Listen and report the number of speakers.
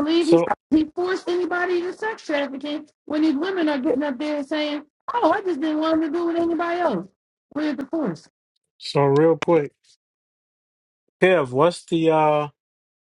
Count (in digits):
2